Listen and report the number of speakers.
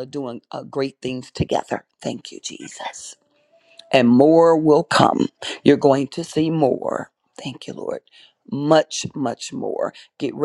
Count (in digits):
1